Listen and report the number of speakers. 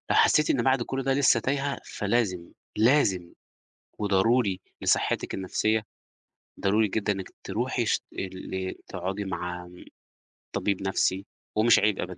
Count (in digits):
1